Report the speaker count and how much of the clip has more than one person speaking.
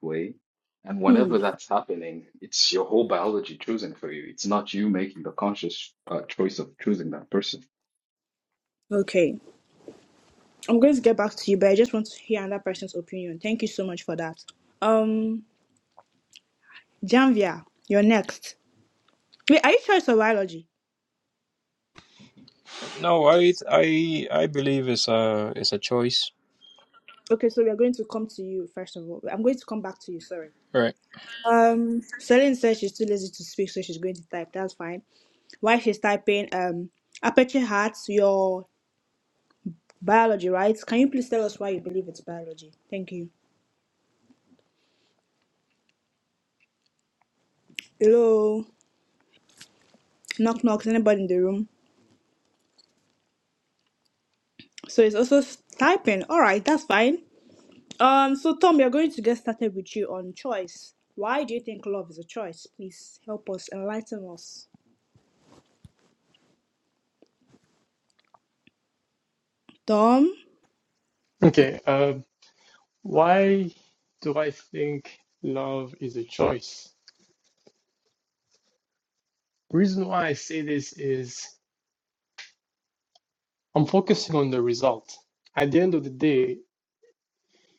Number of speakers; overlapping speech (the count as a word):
four, under 1%